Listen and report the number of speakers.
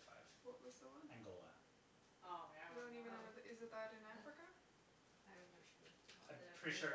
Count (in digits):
4